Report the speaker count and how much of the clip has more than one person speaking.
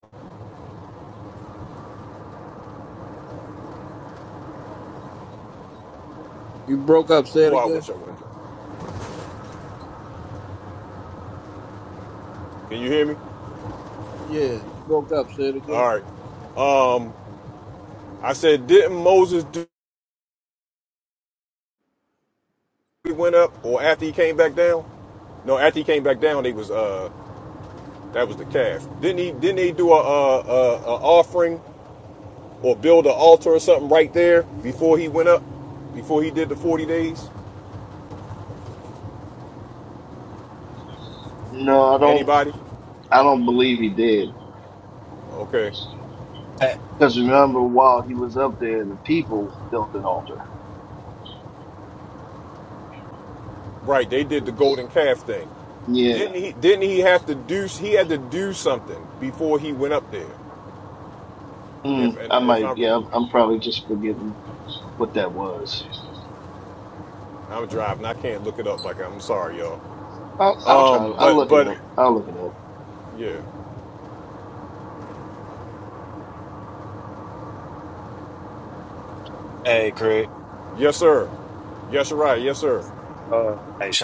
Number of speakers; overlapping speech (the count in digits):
4, about 4%